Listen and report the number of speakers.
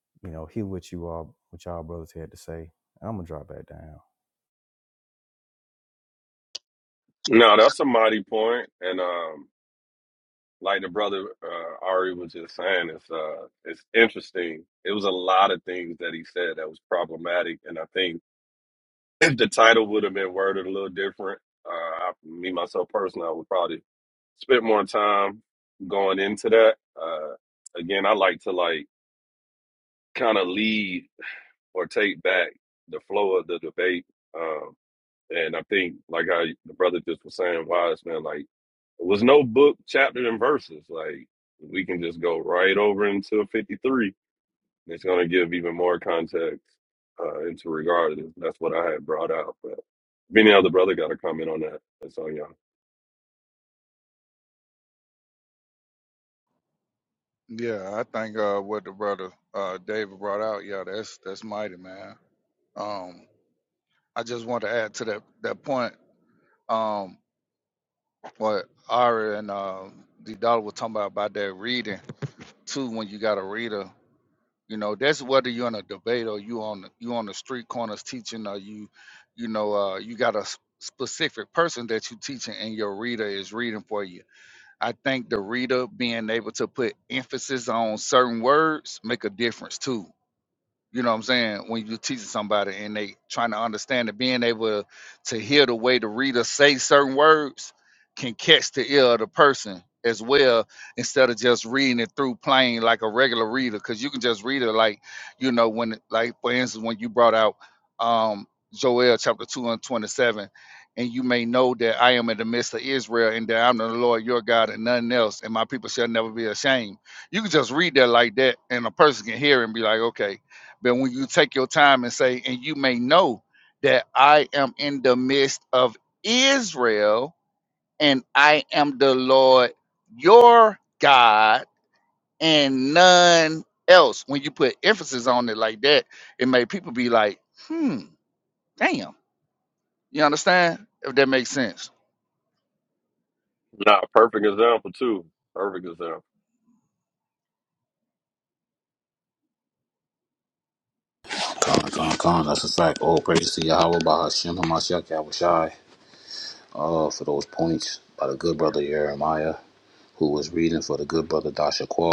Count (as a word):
four